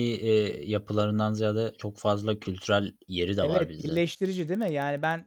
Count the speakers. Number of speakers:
two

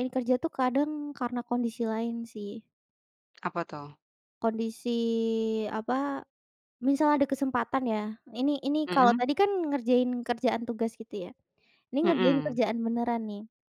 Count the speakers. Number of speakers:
two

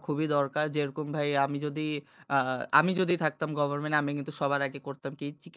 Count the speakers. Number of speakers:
one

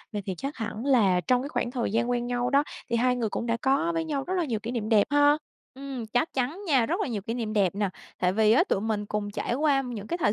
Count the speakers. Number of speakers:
two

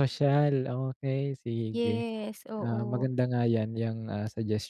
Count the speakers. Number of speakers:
two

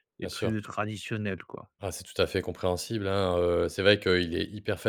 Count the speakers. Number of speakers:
two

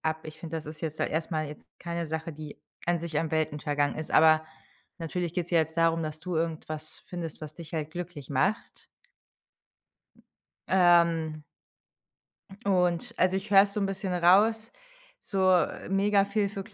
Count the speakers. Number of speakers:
one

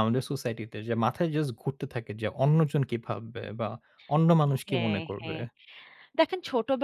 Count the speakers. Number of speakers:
two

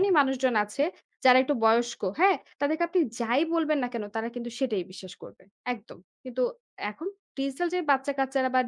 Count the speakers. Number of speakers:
one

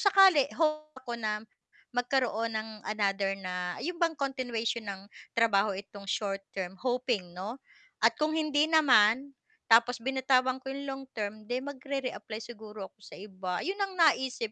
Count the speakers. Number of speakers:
one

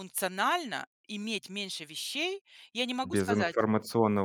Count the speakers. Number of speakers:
two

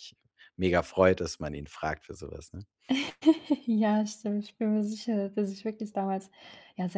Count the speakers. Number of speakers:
two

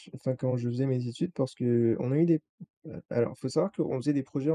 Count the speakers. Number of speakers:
one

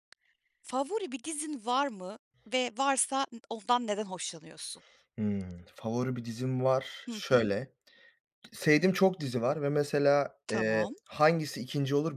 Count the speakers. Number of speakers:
two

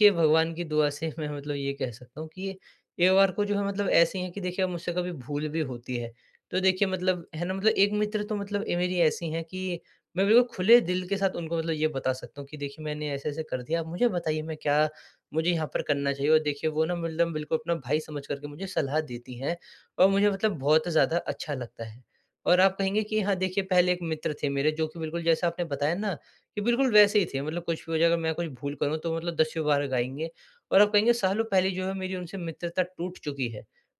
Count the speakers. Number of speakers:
one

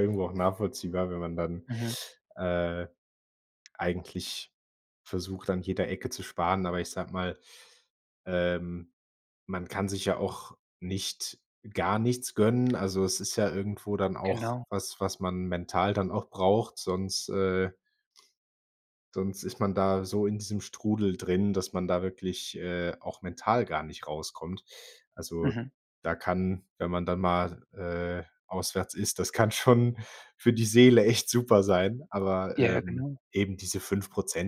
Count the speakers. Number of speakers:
two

